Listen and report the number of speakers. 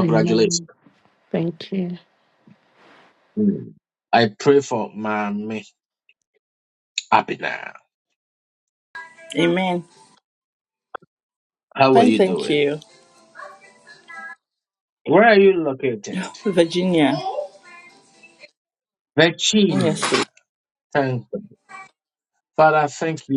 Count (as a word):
three